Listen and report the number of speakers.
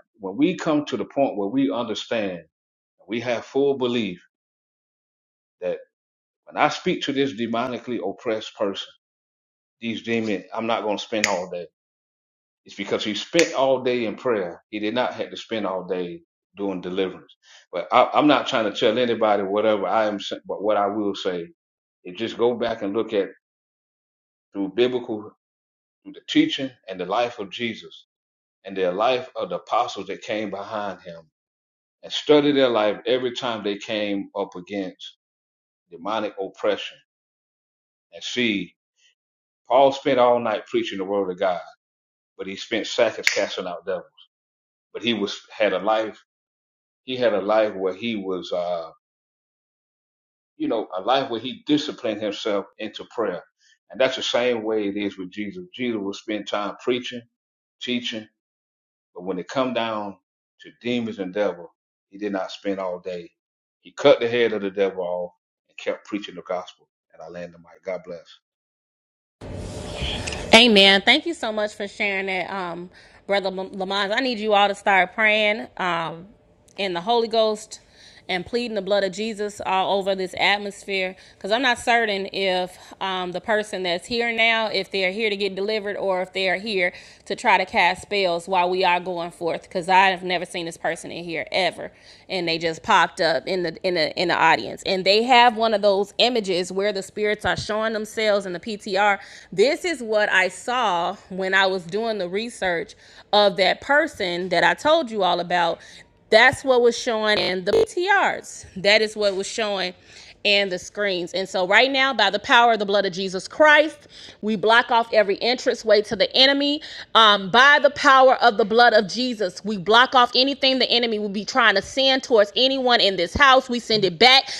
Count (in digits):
2